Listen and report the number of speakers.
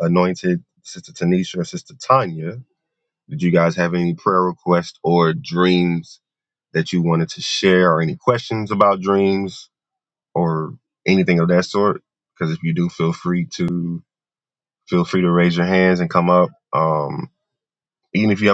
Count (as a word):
one